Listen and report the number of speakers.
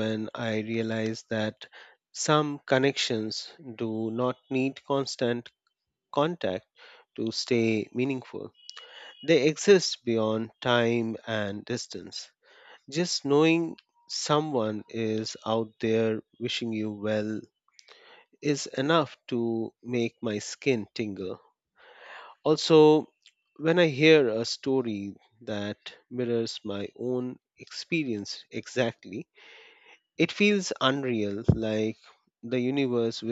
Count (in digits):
1